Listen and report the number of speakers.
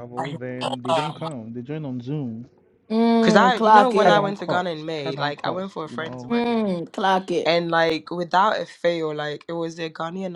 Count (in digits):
3